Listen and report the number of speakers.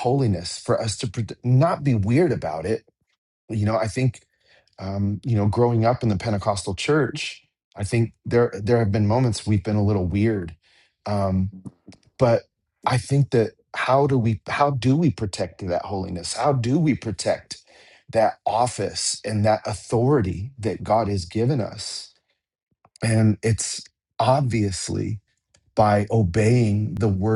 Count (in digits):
1